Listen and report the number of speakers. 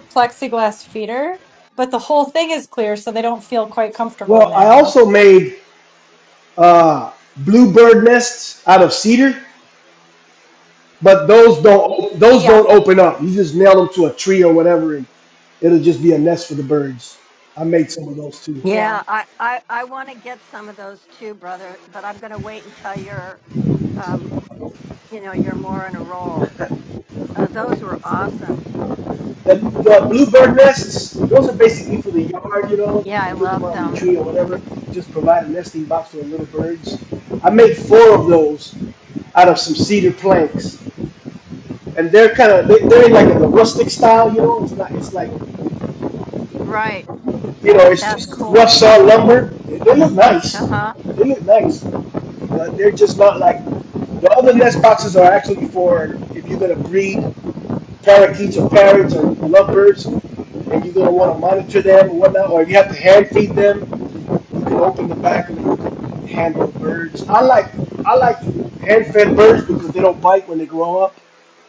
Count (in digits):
3